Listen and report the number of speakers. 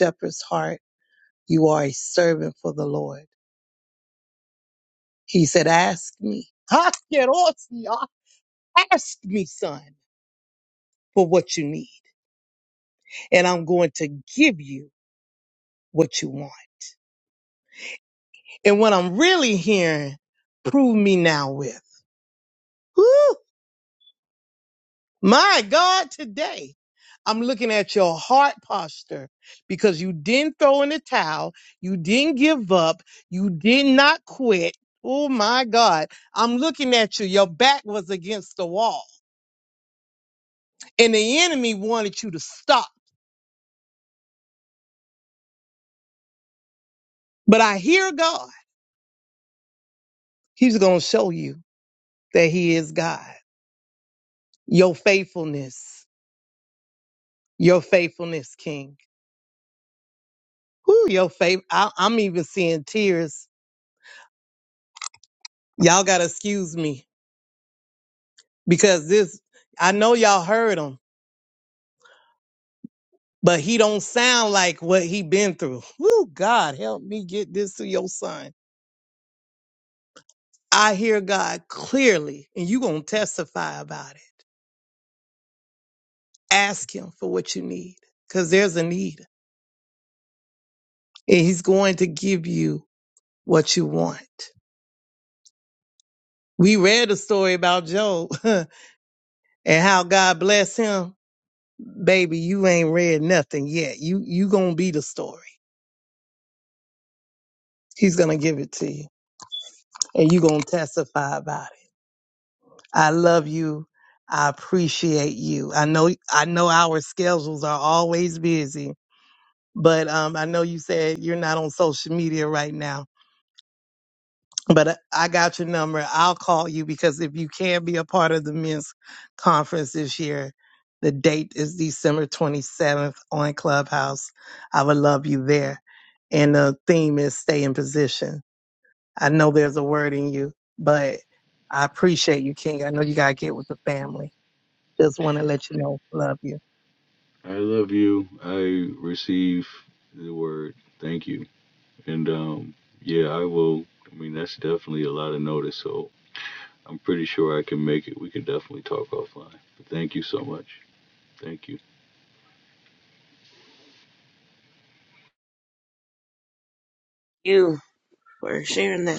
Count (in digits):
3